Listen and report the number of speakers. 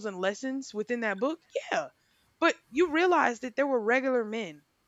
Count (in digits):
1